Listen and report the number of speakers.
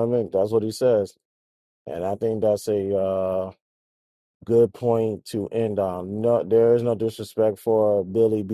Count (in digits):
1